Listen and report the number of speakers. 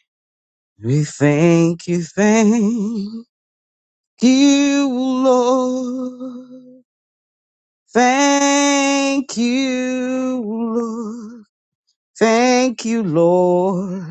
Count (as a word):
one